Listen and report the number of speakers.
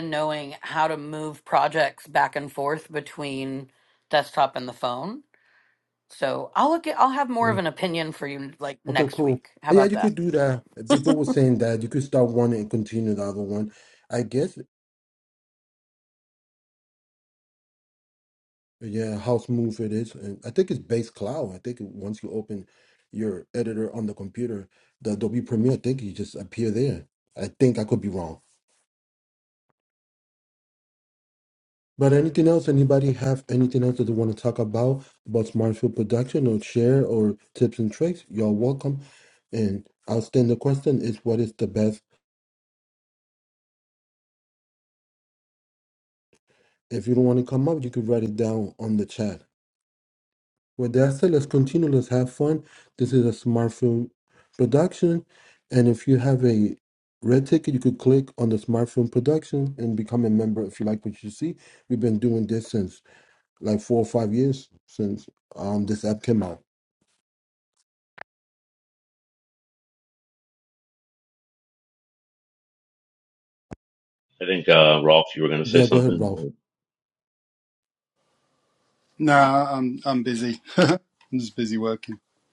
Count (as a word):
four